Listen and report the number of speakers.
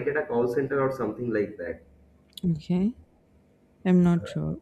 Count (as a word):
two